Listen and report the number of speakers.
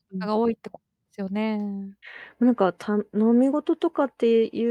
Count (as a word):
two